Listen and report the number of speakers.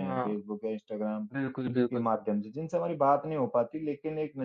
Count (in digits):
2